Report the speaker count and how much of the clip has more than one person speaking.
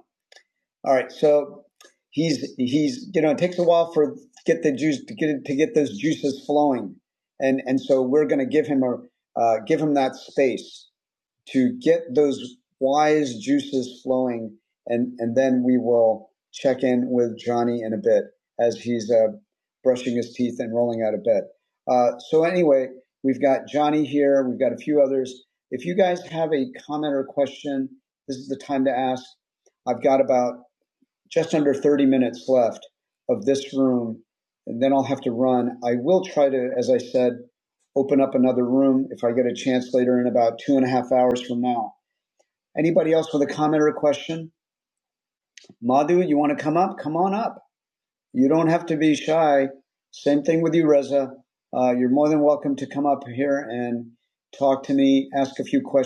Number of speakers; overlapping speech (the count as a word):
one, no overlap